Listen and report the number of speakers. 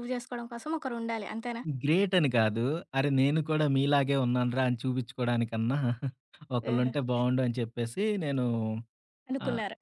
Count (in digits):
2